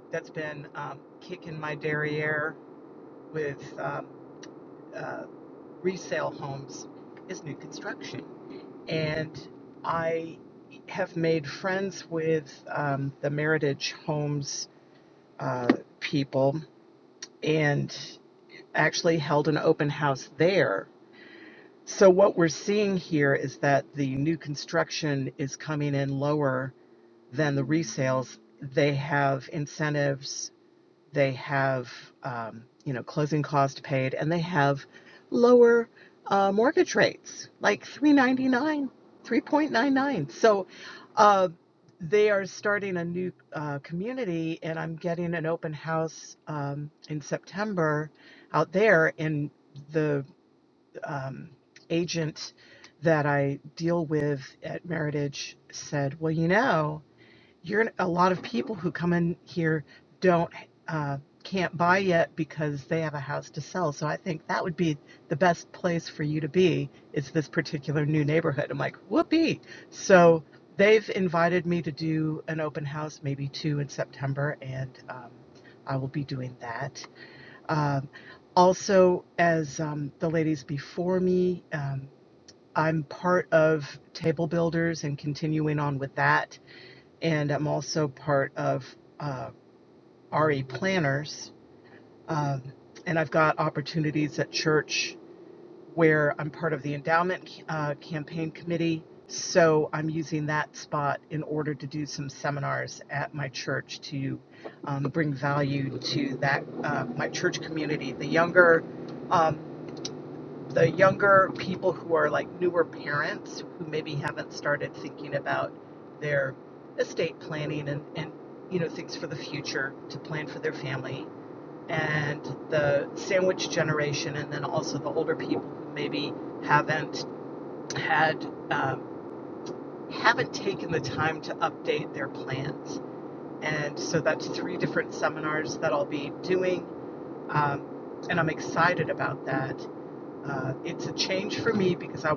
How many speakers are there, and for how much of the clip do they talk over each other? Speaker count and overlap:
1, no overlap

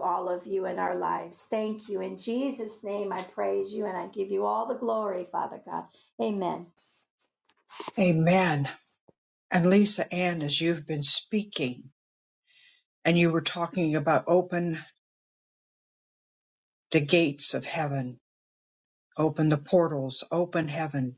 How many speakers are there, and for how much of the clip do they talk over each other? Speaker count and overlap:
2, no overlap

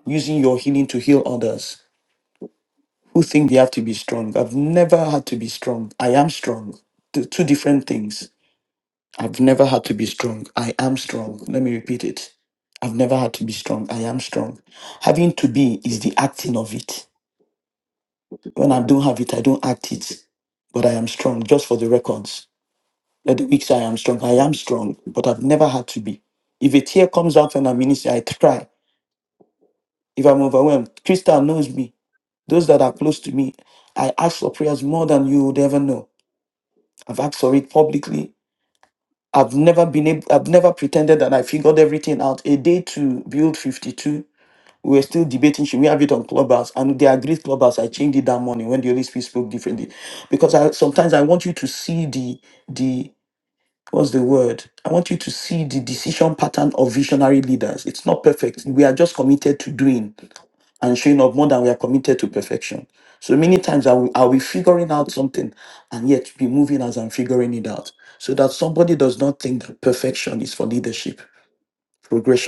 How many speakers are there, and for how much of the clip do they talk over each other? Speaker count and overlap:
1, no overlap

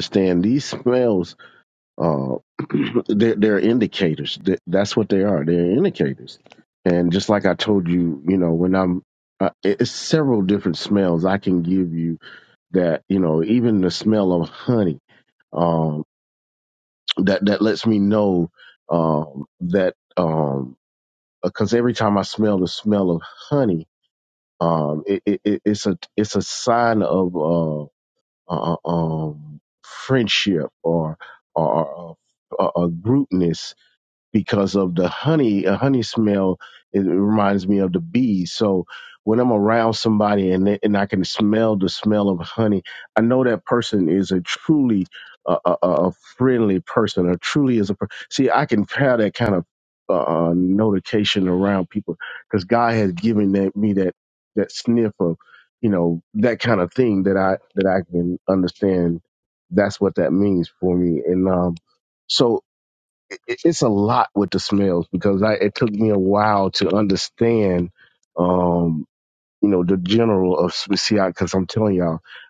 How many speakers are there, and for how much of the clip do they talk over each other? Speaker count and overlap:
1, no overlap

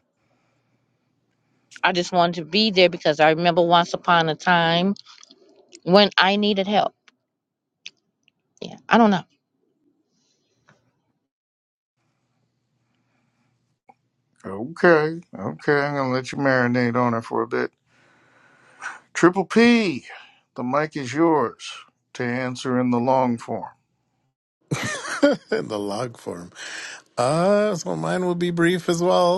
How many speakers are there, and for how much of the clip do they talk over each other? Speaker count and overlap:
3, no overlap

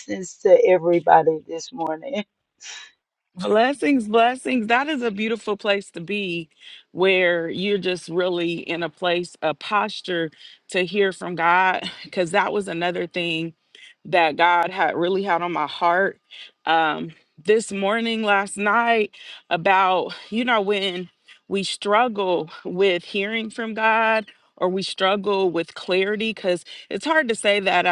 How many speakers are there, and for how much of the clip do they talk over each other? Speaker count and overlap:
2, no overlap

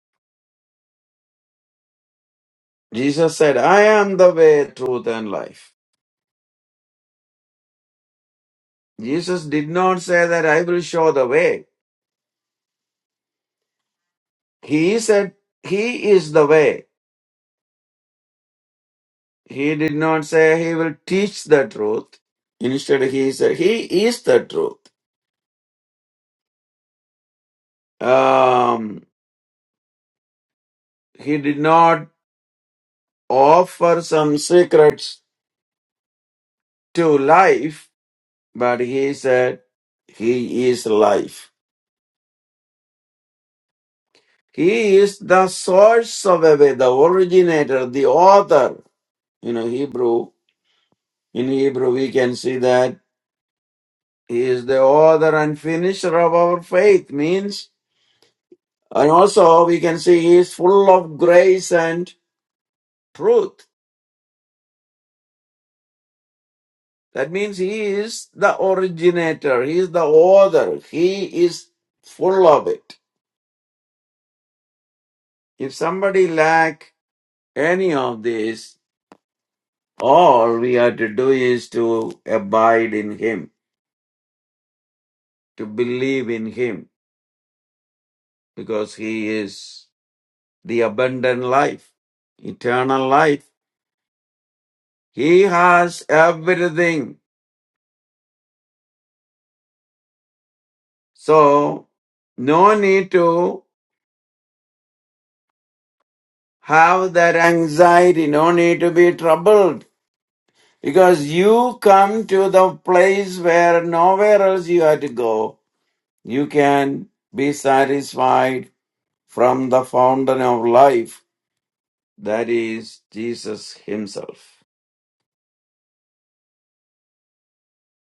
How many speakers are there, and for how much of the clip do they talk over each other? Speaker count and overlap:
1, no overlap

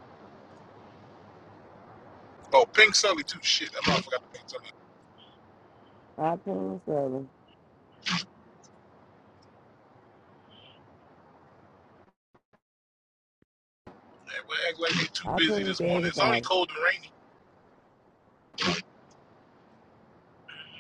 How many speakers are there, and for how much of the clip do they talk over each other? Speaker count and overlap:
2, about 6%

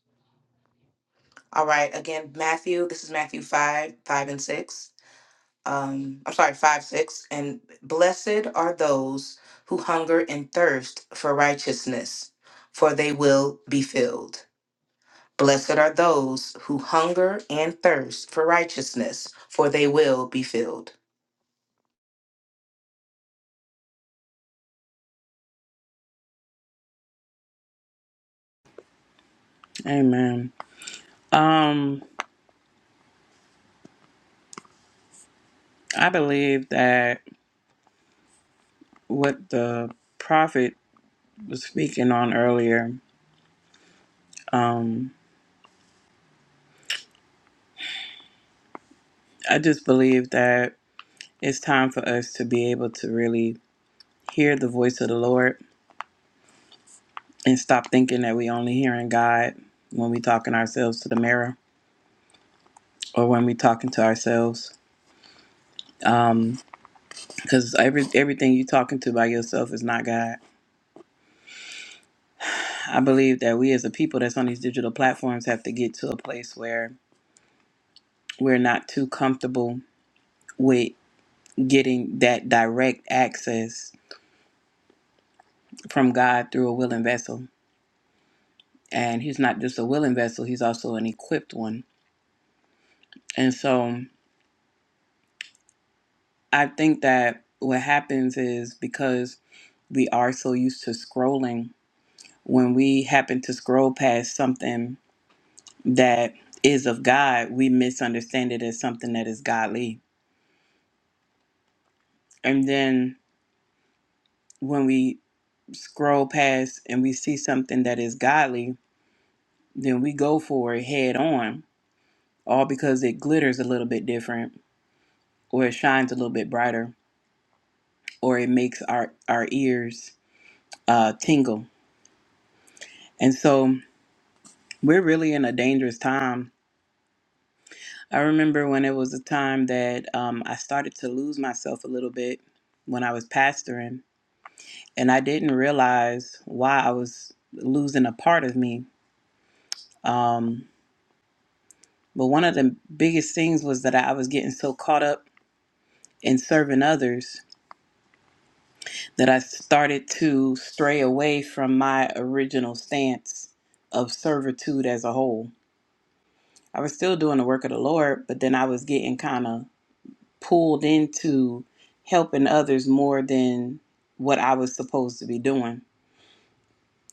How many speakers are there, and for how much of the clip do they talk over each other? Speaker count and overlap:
2, no overlap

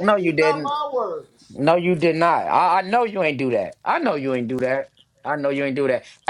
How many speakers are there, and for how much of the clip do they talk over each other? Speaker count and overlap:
2, about 11%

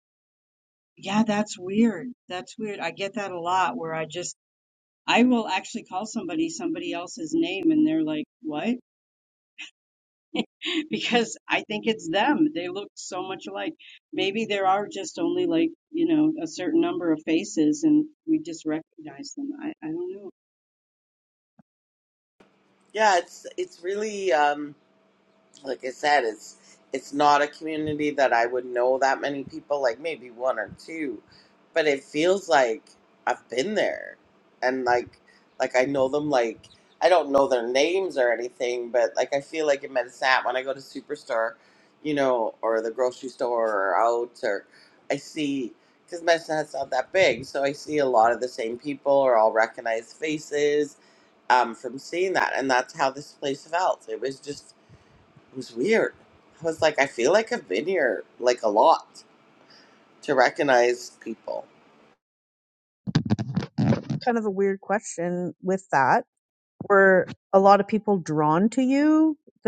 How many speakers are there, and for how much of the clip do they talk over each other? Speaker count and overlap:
3, no overlap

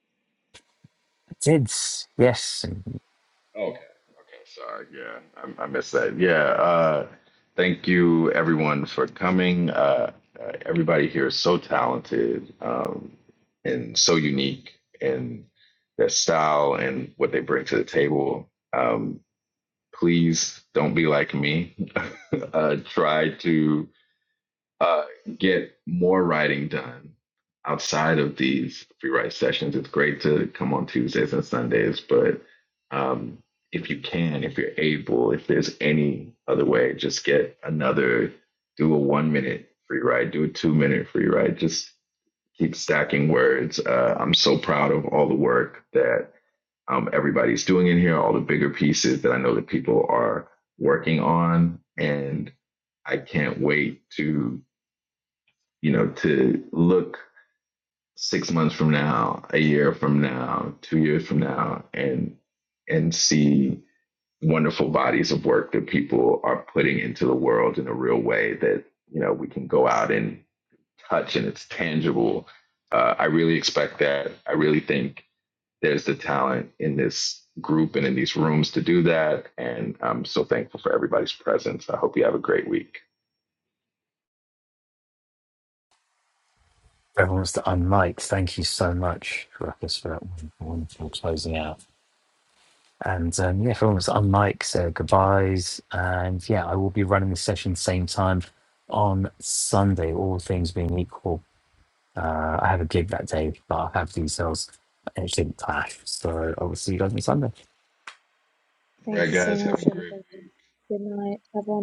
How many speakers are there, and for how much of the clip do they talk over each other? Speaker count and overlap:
3, about 1%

